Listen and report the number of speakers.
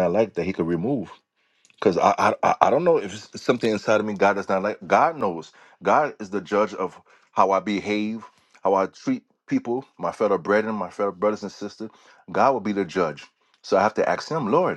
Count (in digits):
1